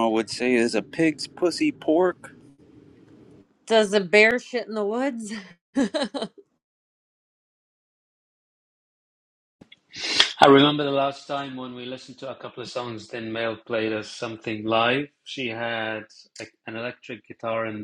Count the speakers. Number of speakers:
three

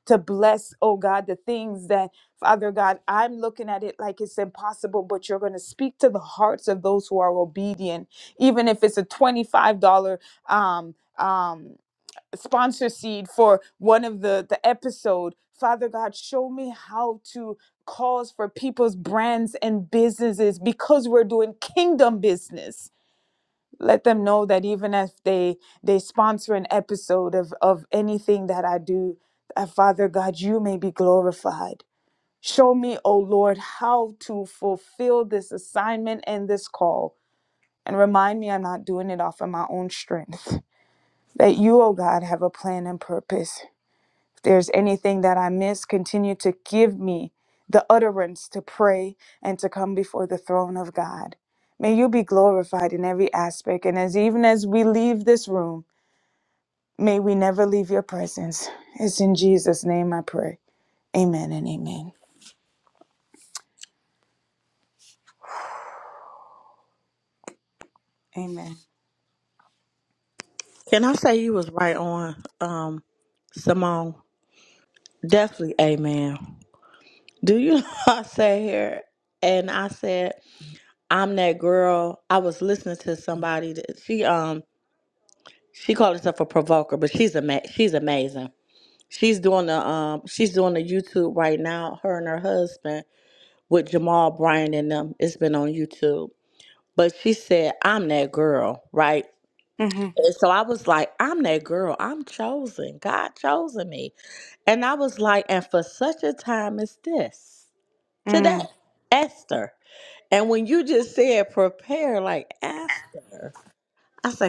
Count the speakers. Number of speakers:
two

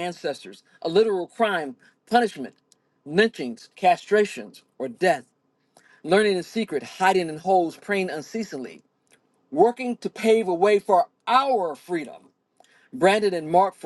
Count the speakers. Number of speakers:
one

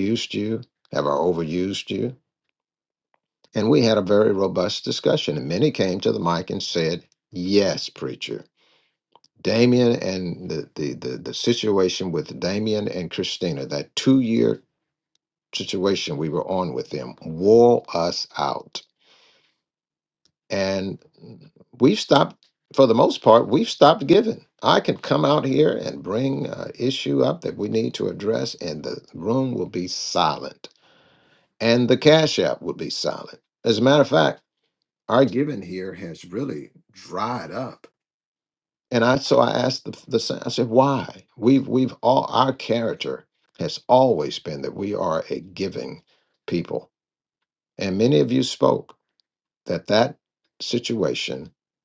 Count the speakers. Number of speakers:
one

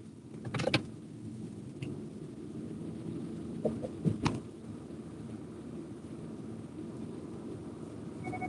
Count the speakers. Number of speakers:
zero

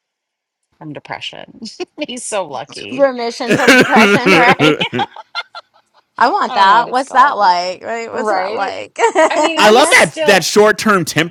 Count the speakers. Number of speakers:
three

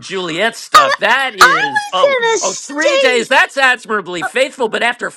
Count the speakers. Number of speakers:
two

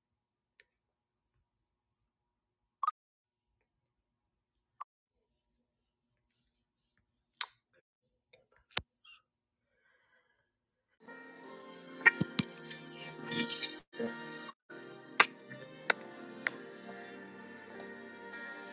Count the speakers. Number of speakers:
zero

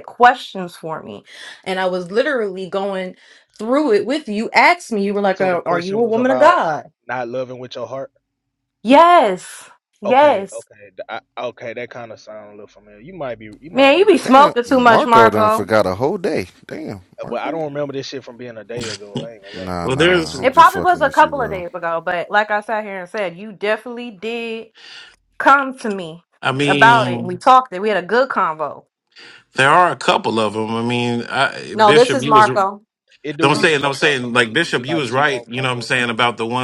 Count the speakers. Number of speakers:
four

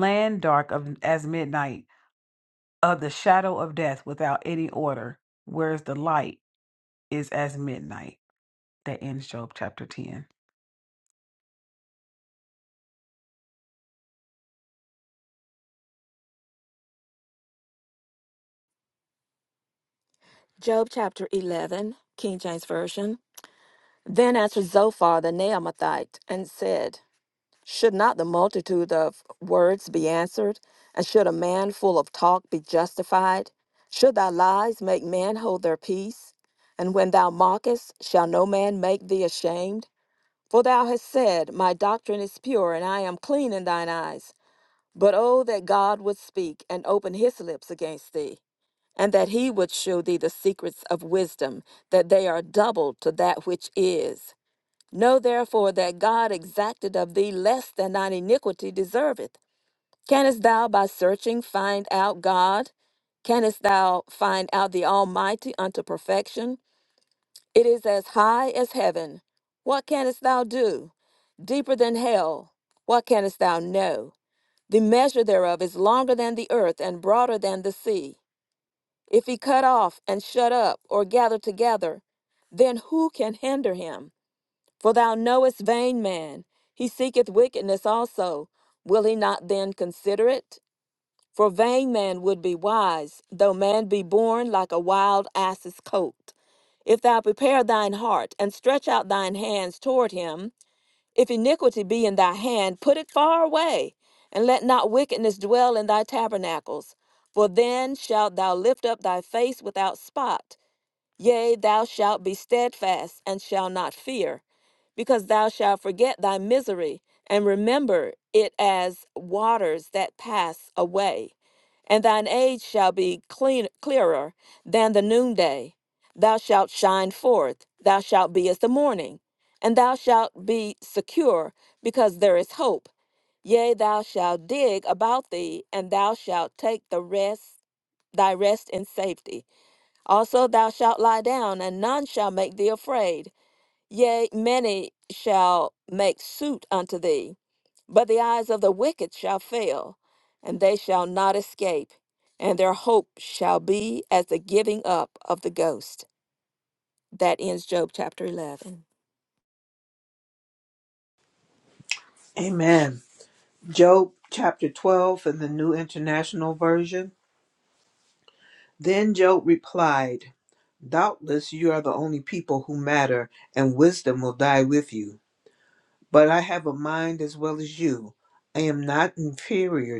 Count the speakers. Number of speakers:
three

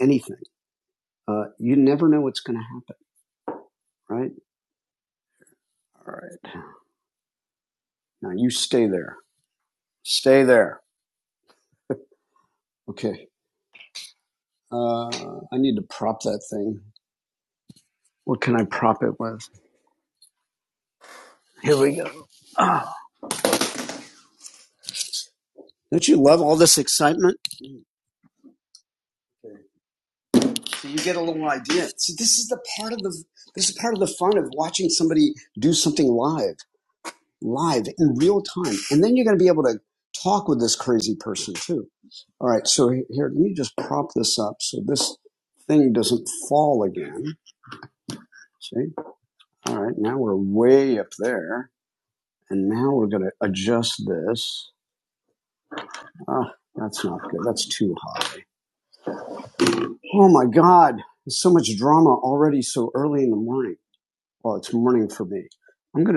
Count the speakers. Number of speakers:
one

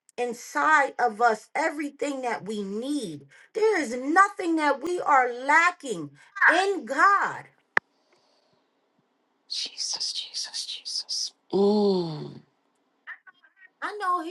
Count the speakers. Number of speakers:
two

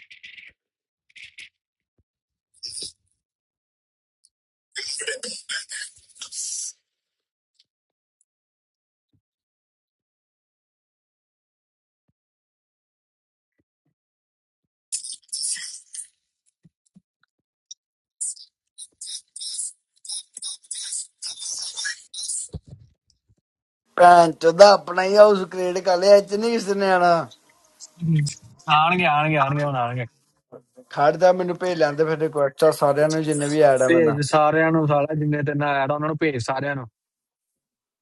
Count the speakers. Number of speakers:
two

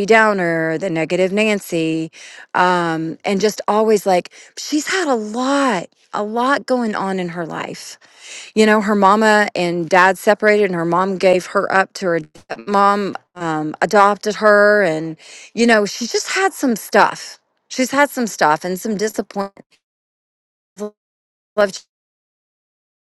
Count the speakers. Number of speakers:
one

